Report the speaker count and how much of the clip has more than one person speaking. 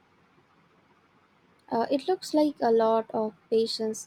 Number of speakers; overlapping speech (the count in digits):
1, no overlap